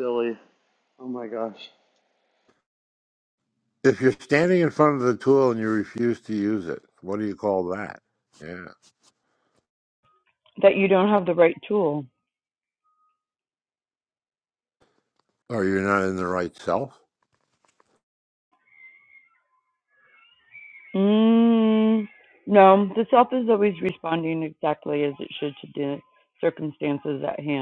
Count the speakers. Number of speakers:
three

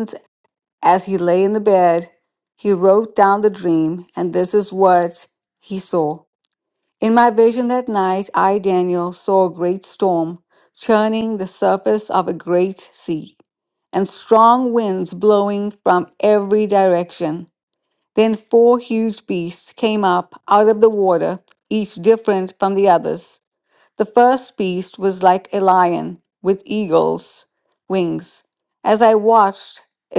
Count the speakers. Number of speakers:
one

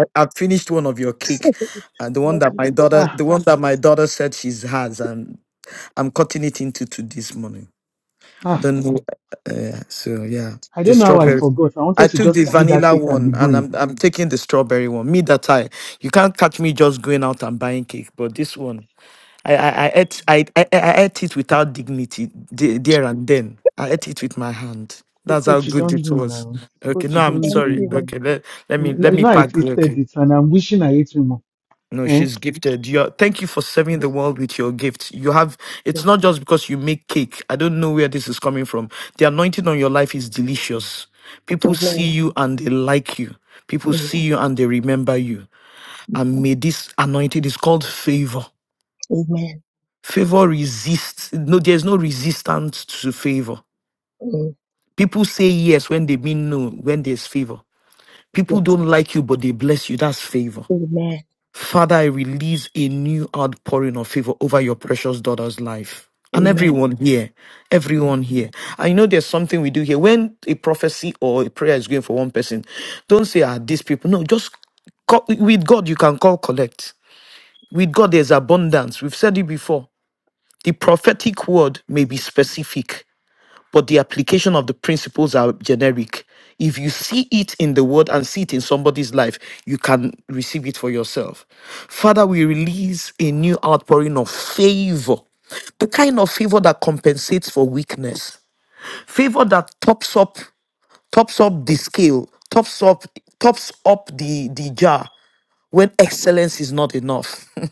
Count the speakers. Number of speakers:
three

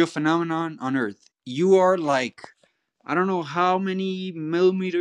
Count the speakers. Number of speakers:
one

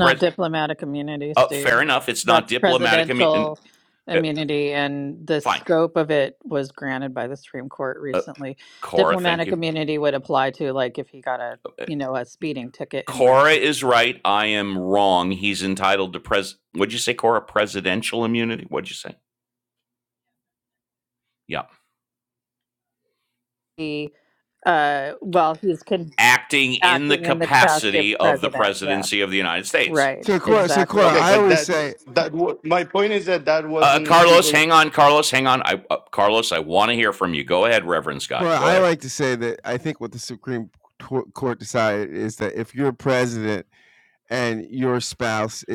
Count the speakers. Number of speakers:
four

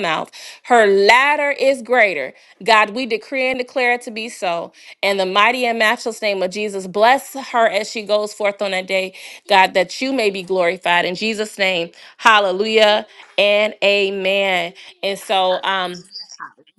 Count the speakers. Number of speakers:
one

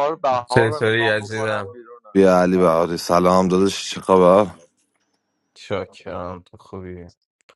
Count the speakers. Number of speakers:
three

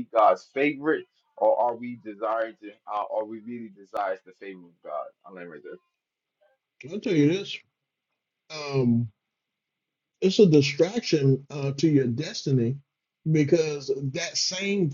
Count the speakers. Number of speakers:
two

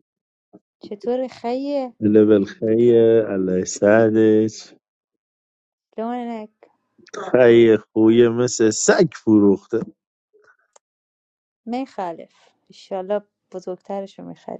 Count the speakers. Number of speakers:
two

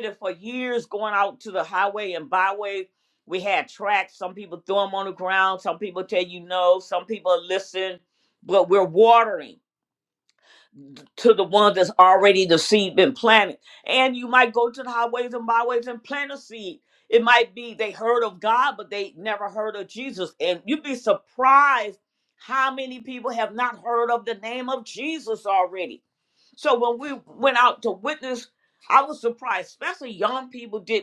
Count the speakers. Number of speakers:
one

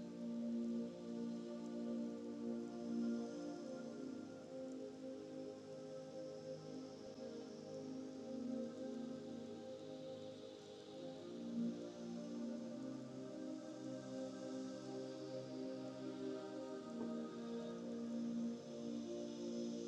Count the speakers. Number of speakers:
zero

